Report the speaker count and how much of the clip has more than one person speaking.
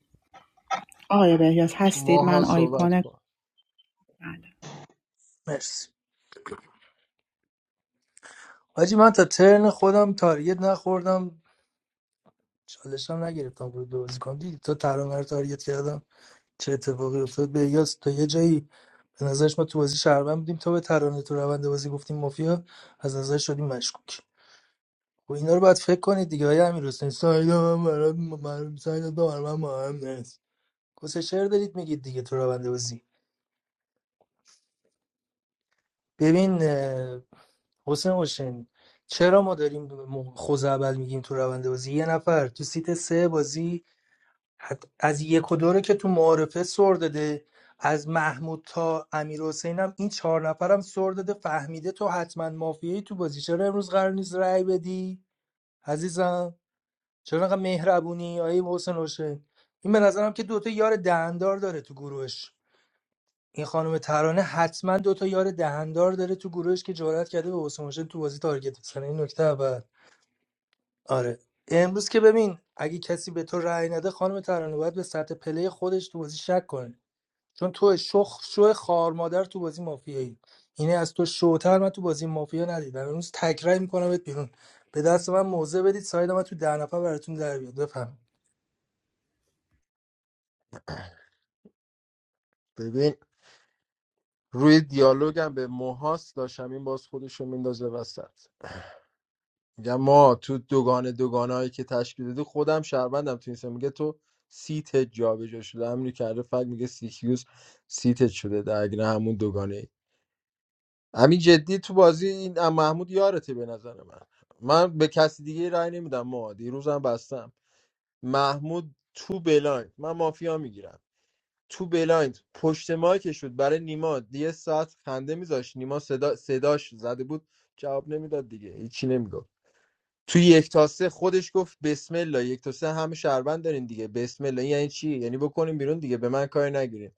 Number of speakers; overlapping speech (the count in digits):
3, about 1%